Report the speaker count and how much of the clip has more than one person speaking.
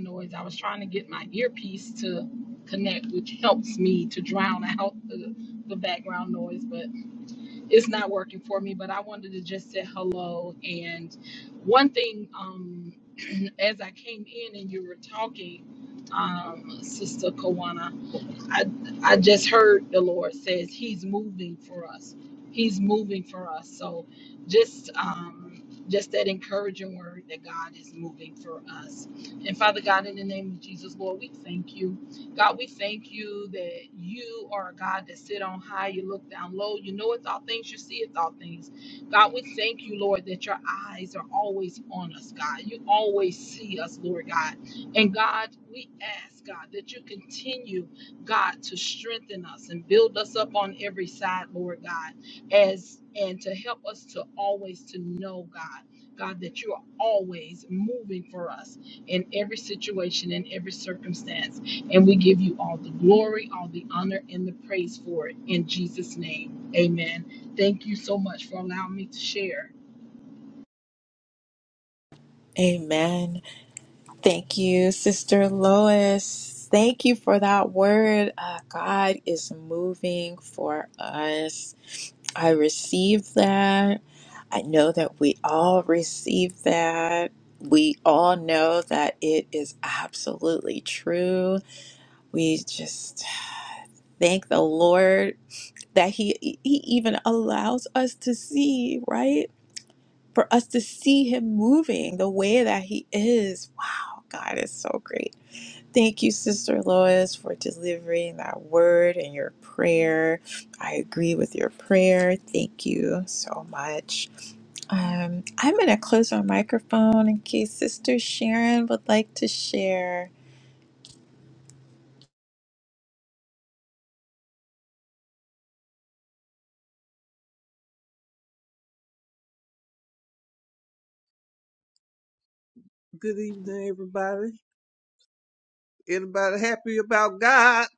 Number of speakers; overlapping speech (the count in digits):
3, no overlap